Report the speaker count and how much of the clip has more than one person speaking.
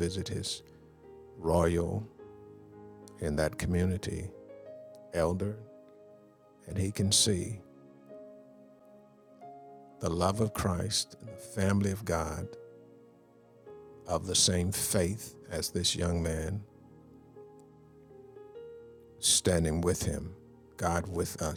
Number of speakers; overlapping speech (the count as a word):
one, no overlap